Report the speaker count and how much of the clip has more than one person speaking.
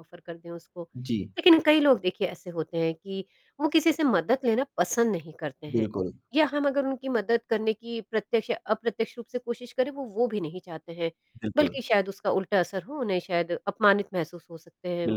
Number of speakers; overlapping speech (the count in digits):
2, about 3%